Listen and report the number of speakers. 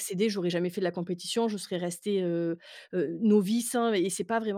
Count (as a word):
one